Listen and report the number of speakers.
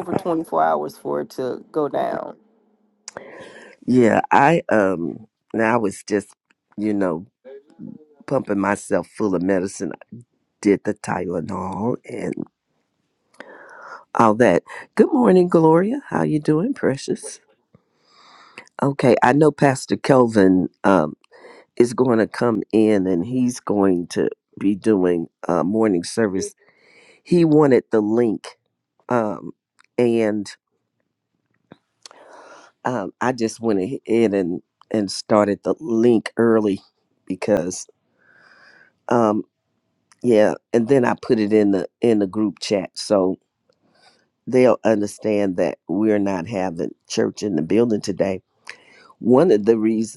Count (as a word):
two